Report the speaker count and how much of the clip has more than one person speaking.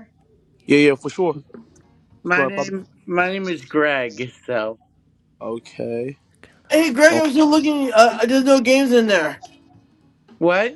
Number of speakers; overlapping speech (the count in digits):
3, about 4%